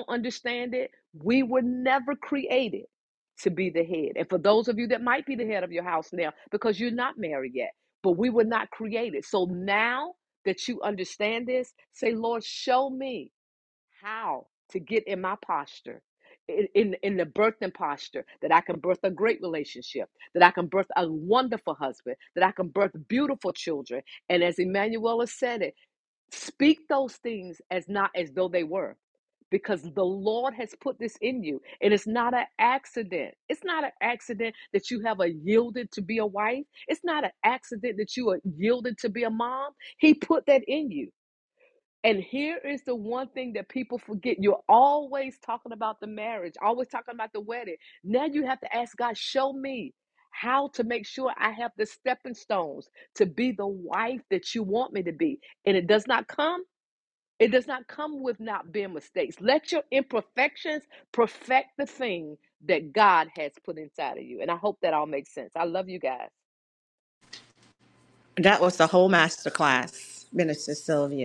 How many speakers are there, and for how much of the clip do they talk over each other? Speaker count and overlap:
2, no overlap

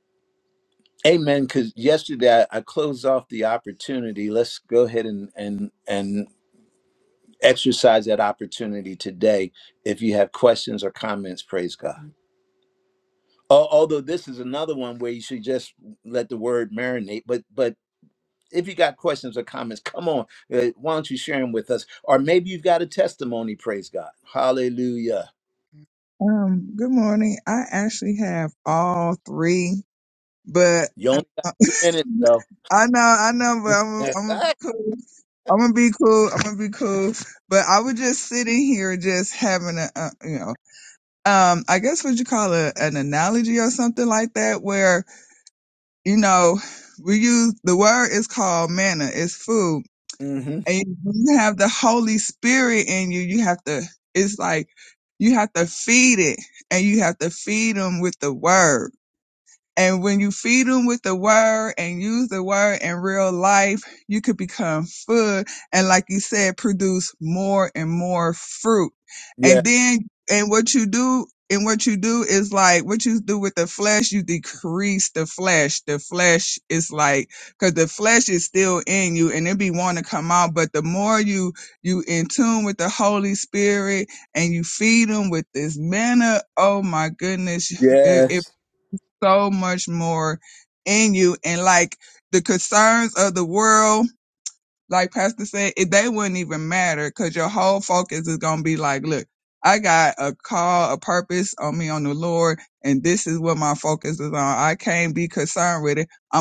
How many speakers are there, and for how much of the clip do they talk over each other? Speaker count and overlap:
2, about 1%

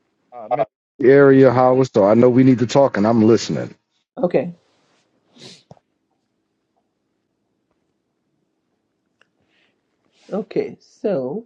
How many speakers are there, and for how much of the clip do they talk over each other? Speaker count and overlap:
2, no overlap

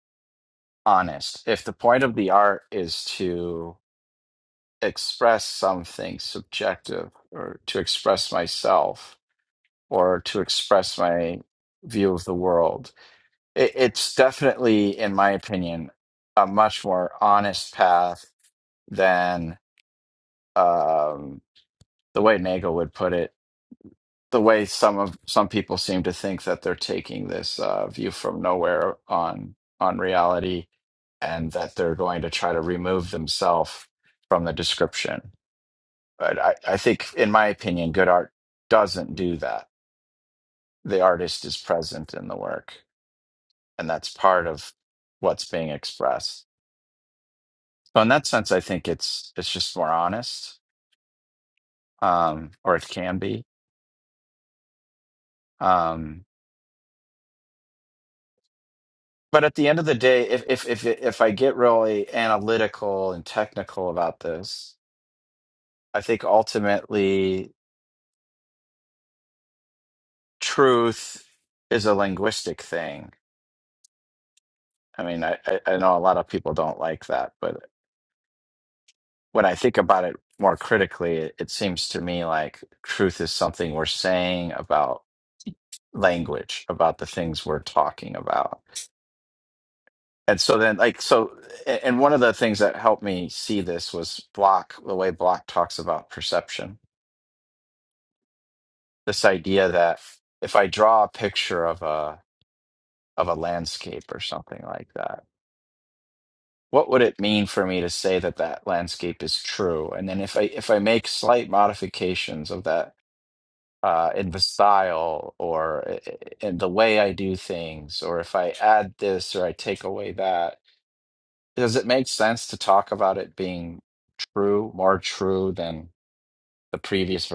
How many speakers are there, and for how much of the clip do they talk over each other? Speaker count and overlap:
1, no overlap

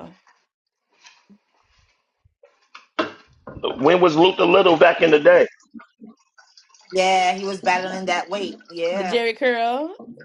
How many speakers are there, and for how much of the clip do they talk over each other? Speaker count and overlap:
3, about 3%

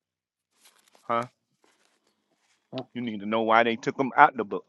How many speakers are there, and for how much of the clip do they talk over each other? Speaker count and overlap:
1, no overlap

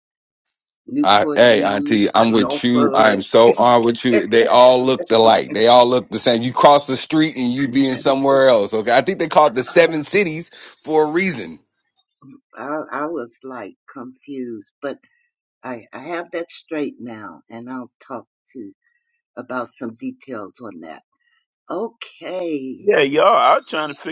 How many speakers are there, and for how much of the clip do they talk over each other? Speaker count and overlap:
3, about 10%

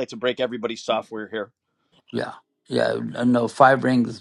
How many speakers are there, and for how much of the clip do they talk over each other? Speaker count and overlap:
2, no overlap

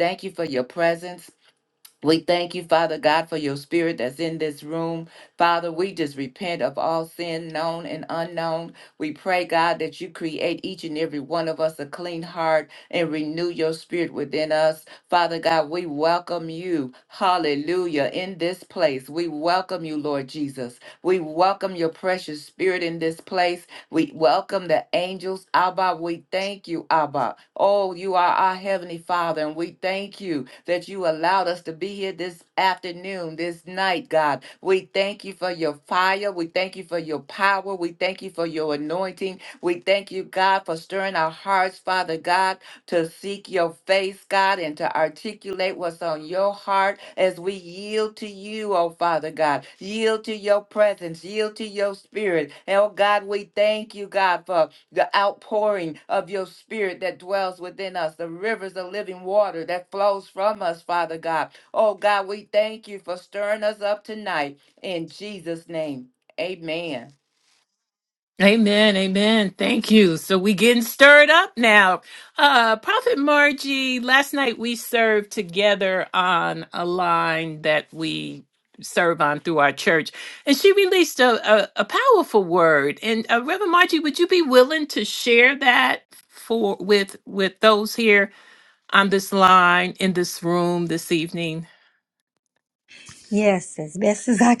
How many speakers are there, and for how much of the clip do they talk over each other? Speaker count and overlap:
3, no overlap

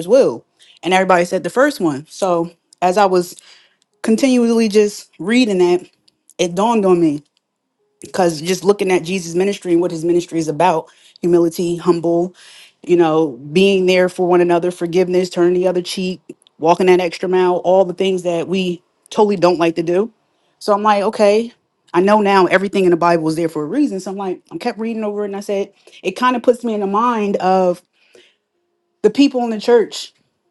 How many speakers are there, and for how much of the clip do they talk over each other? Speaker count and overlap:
1, no overlap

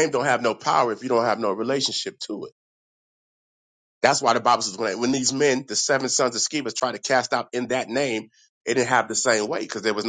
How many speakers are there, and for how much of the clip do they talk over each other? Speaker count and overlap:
1, no overlap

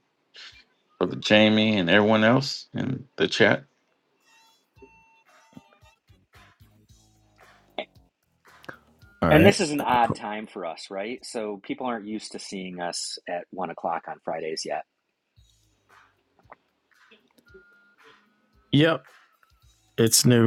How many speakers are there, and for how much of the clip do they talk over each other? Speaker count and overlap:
3, about 1%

